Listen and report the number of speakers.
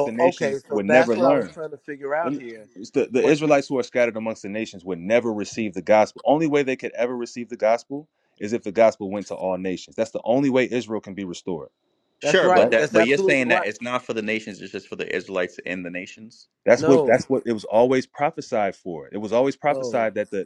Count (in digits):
3